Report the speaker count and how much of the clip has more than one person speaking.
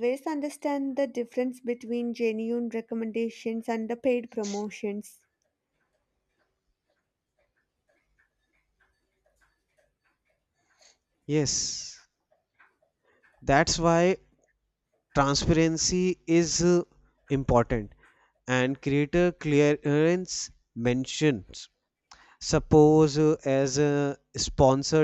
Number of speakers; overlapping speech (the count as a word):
two, no overlap